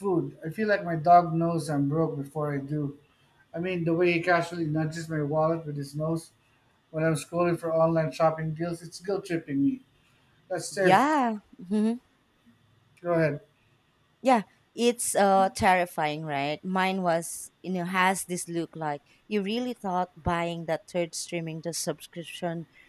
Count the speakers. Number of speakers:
two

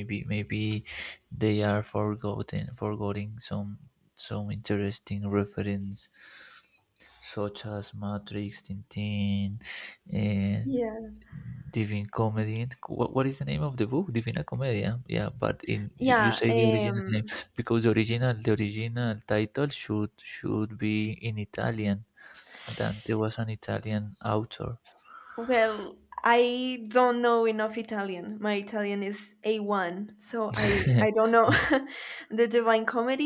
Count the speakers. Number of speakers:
two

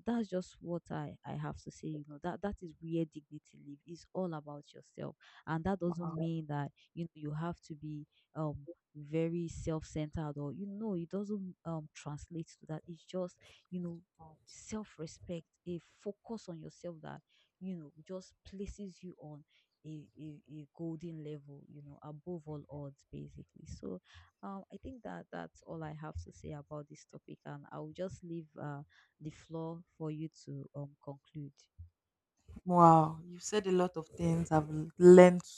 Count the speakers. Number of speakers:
two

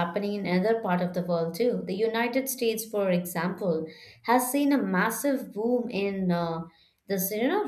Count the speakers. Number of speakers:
one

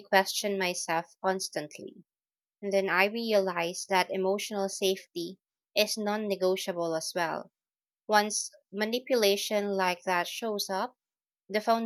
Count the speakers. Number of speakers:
one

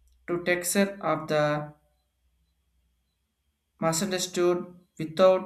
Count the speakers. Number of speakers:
one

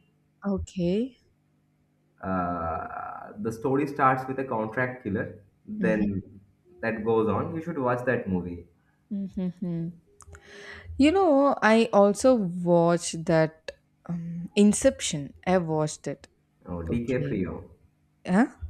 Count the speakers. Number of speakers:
two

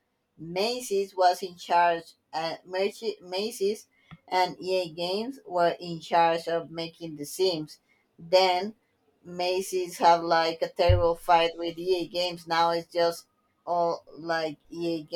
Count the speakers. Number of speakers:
one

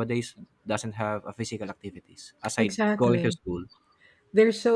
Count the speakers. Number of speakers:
two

